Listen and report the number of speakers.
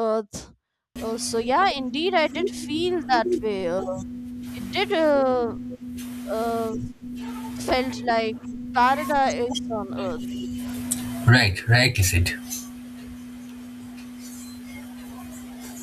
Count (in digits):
2